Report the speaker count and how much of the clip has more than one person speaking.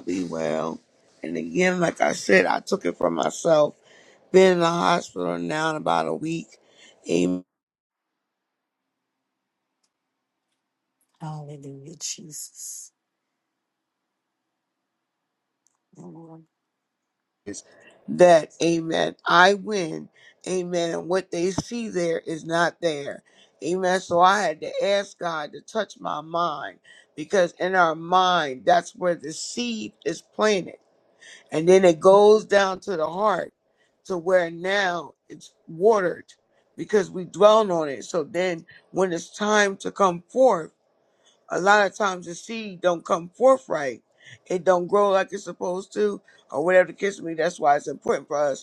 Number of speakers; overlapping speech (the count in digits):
2, no overlap